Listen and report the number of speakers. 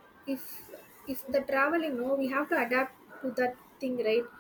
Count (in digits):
1